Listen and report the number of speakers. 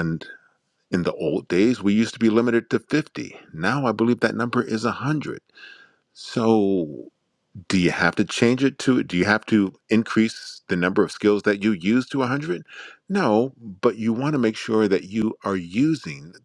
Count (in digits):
1